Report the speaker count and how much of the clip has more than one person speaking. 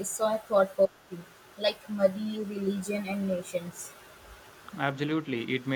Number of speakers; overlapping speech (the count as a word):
two, no overlap